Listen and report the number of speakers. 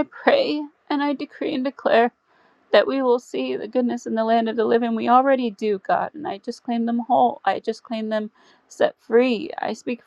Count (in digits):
1